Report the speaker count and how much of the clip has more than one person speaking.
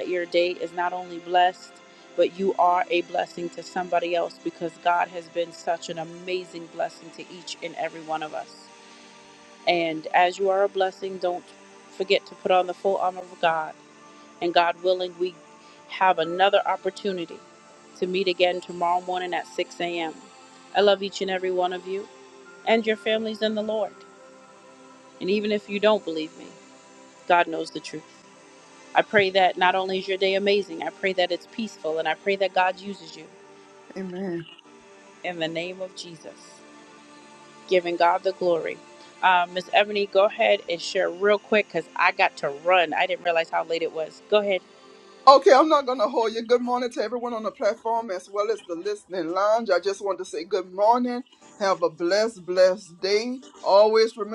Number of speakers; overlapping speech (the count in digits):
2, no overlap